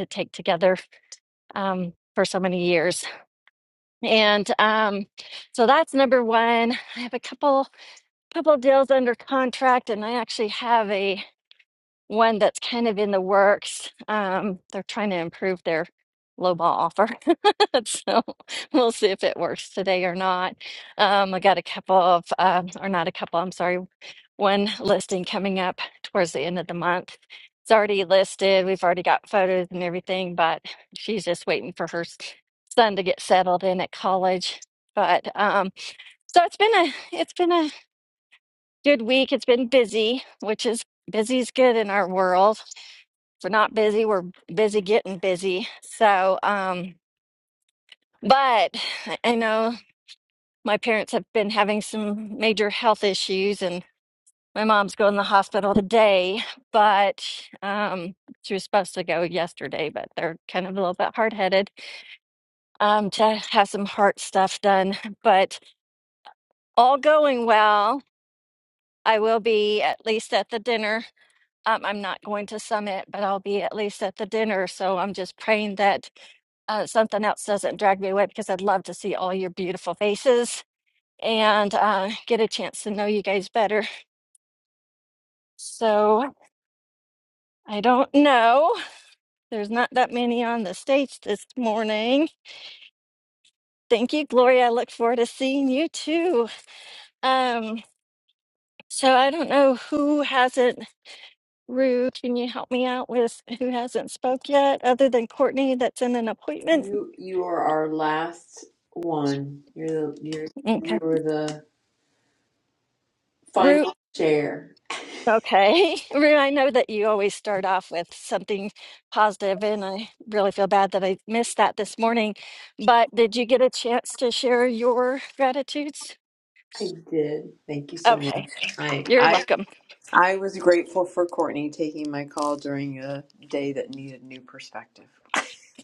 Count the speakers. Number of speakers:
2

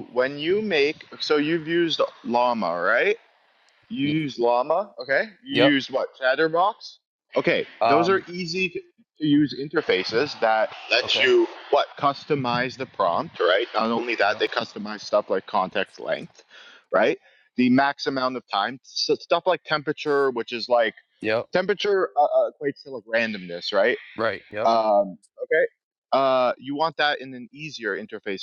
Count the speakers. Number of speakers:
2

